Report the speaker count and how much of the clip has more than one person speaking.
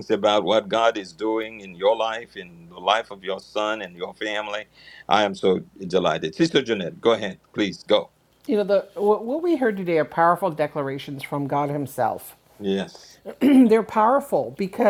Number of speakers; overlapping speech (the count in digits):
2, no overlap